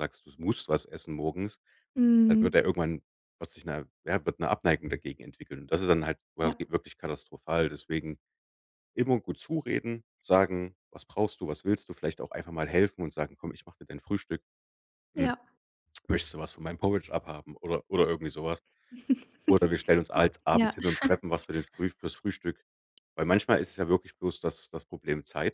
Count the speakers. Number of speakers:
2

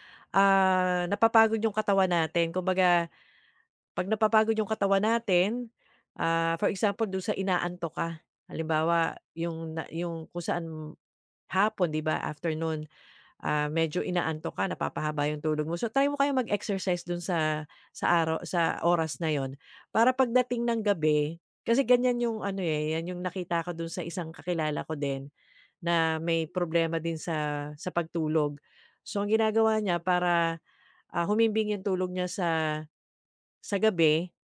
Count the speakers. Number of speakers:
1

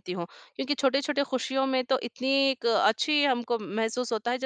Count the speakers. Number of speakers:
1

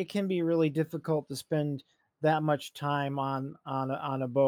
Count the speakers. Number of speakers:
1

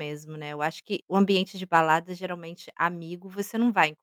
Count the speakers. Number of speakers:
1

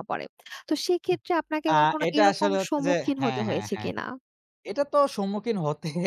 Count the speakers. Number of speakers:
2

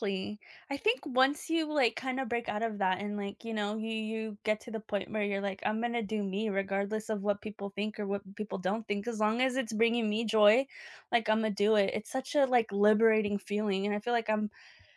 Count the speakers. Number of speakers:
1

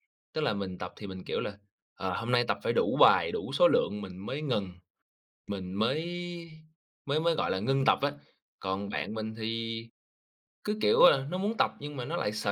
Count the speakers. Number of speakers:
1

